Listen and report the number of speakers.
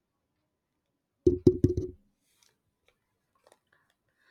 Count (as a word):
zero